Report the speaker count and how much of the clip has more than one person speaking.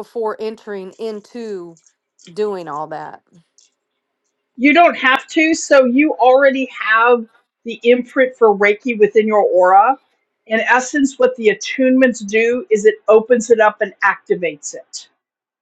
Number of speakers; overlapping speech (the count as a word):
two, no overlap